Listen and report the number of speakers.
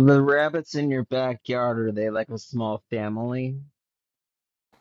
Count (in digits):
1